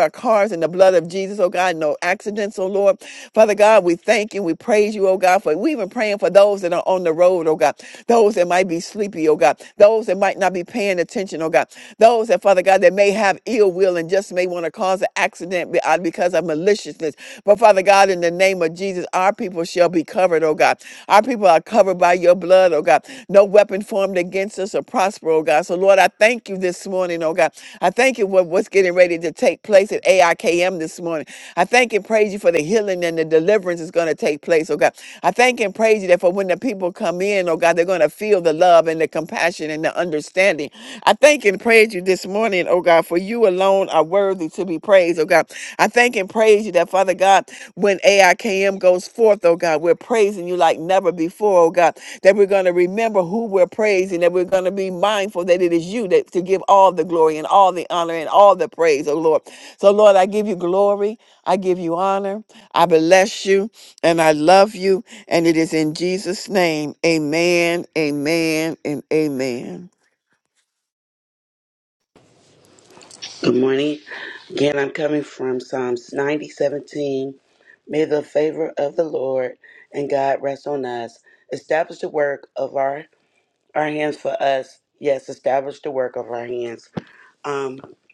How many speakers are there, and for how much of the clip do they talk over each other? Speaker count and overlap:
two, no overlap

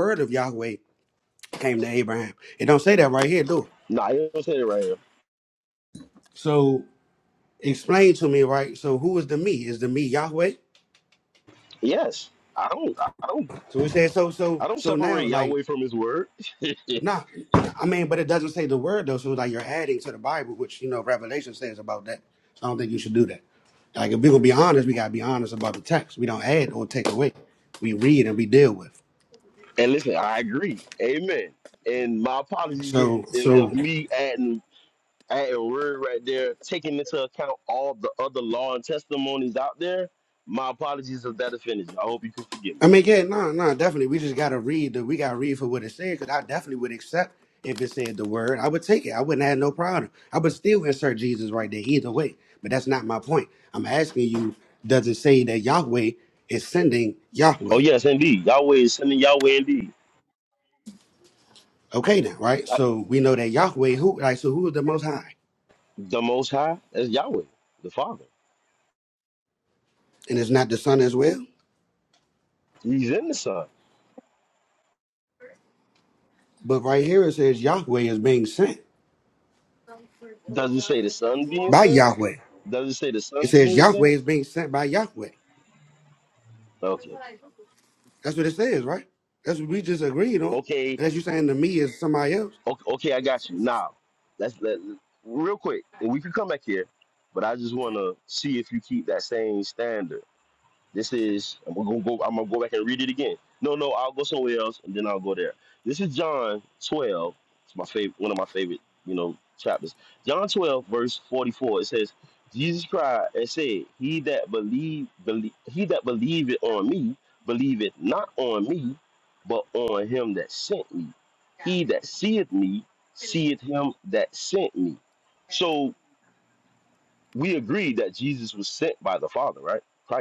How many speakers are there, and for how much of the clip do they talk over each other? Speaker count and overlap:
two, about 3%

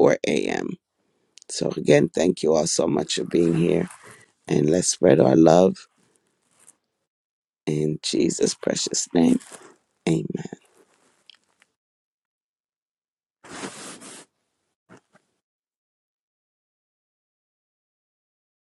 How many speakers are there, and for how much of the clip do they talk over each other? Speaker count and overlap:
one, no overlap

